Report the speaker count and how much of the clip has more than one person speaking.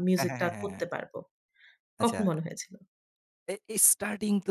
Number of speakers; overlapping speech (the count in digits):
2, about 22%